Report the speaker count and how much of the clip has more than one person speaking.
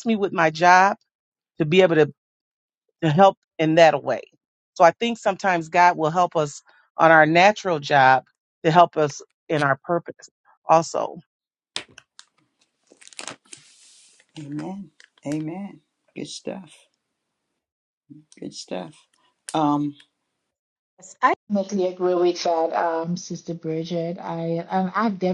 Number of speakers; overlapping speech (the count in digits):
3, no overlap